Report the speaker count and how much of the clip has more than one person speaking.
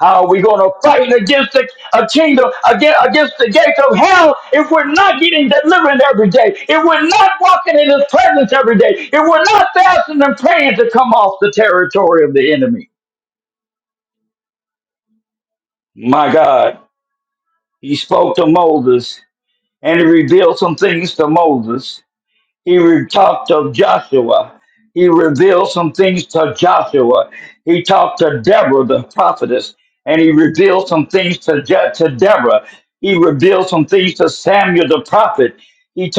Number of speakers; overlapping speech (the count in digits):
1, no overlap